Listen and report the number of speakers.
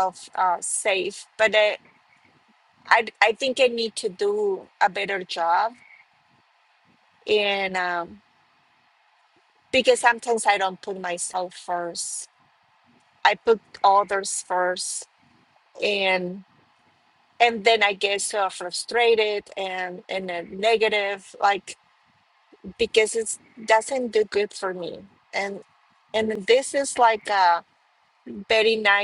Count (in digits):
1